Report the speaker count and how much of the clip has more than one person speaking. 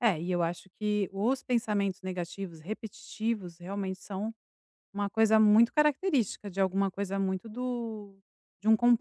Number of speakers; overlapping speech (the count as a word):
one, no overlap